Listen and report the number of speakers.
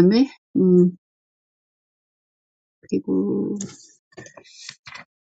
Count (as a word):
one